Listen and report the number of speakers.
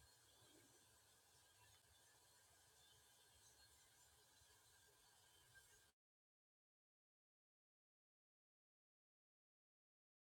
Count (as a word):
zero